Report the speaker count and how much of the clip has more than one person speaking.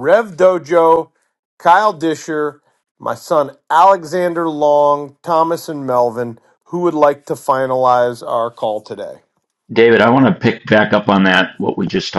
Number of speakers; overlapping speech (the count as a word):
two, no overlap